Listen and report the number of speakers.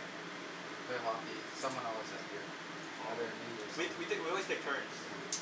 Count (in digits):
2